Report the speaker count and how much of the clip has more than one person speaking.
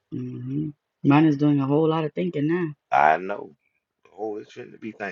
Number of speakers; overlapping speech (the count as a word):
two, no overlap